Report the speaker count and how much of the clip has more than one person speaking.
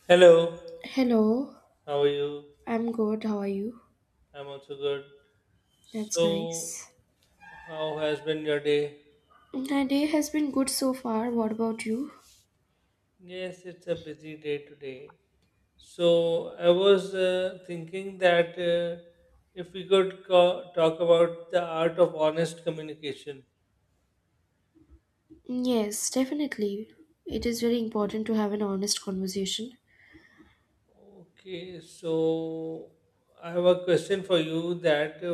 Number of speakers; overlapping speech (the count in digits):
2, about 2%